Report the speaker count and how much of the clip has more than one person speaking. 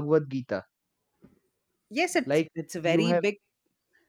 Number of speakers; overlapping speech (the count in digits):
2, about 15%